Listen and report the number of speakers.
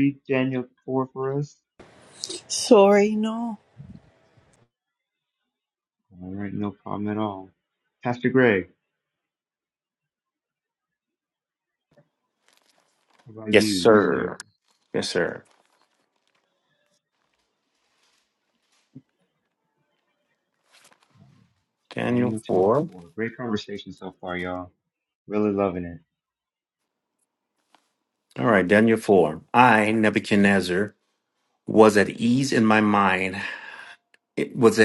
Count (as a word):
three